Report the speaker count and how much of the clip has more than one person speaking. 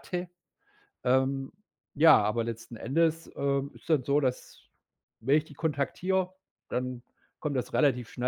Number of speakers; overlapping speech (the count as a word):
one, no overlap